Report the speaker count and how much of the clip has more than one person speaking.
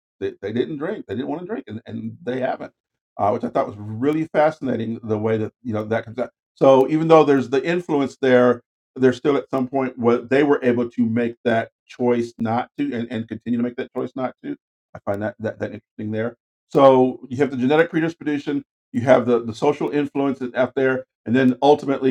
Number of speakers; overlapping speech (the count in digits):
1, no overlap